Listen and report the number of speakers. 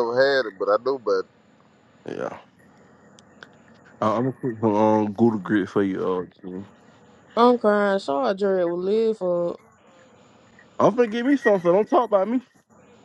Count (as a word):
three